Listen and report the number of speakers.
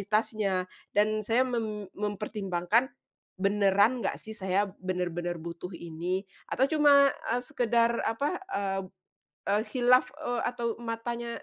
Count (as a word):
one